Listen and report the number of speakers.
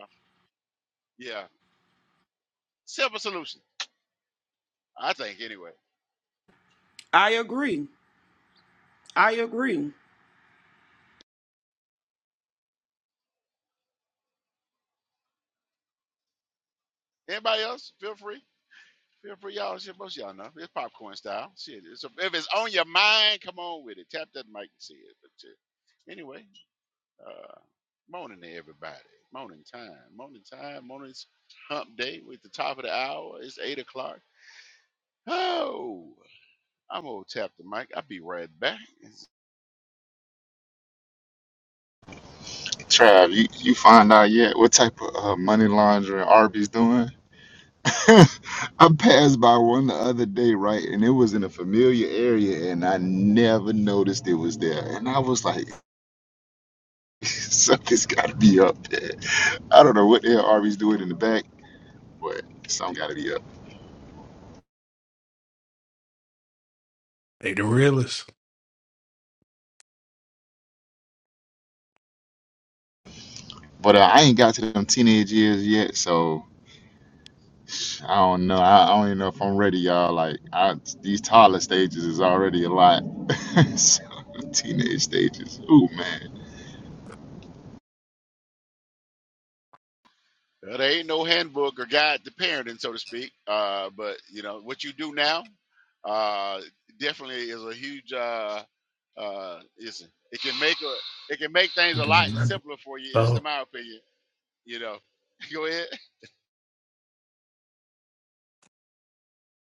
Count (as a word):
four